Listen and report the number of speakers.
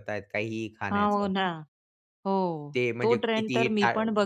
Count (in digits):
2